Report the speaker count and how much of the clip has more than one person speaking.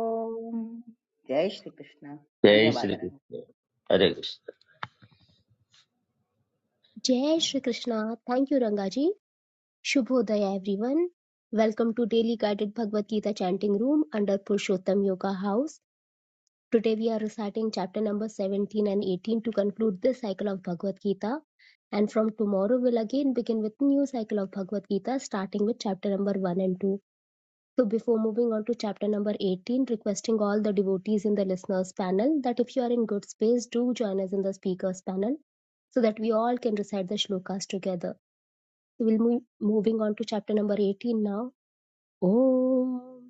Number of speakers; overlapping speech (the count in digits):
3, about 1%